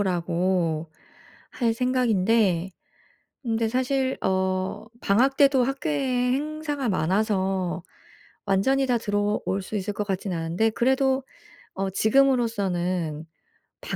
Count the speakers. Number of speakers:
1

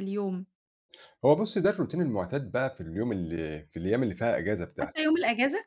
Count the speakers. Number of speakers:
2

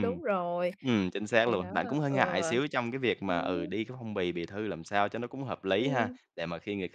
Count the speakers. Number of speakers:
2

